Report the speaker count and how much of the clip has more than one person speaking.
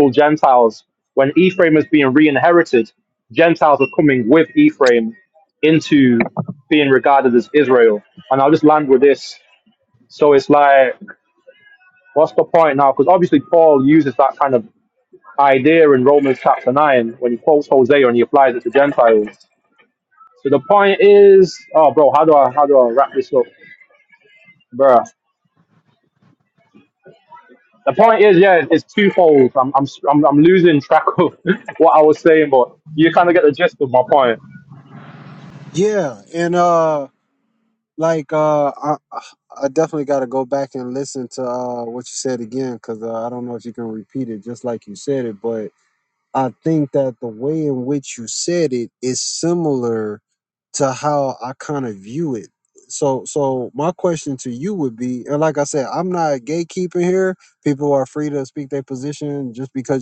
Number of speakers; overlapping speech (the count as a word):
two, no overlap